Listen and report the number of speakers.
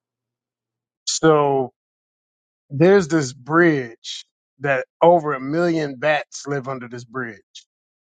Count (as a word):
one